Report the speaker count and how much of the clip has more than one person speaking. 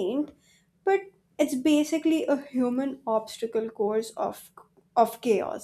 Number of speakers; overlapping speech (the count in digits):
1, no overlap